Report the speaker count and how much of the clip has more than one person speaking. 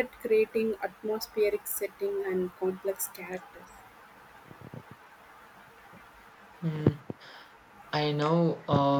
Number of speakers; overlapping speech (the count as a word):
two, no overlap